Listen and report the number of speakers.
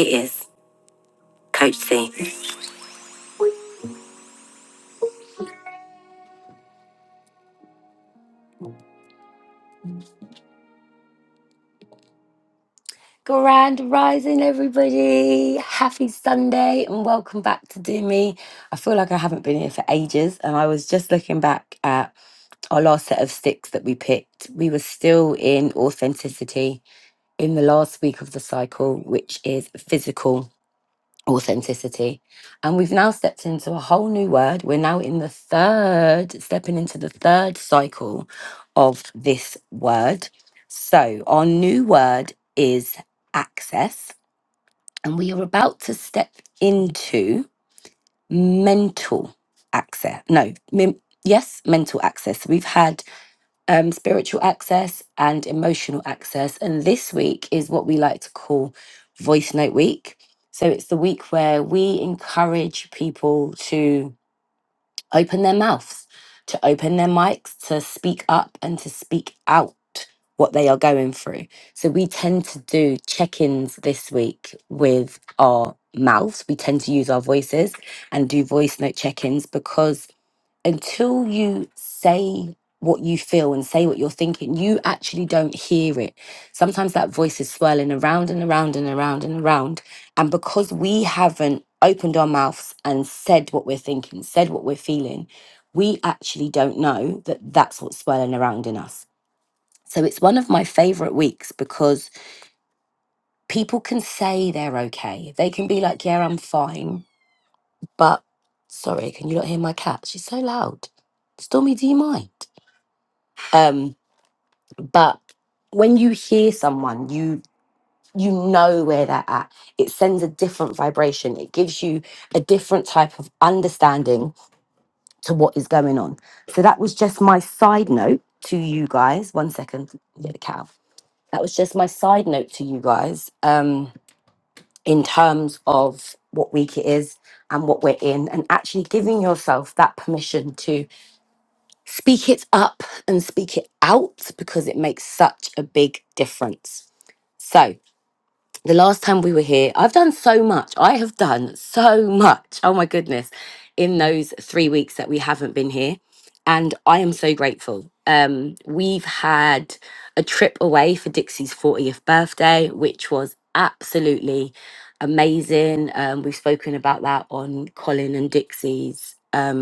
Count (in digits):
1